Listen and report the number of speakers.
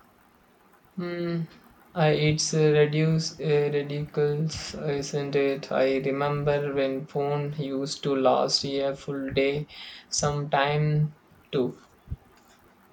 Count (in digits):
1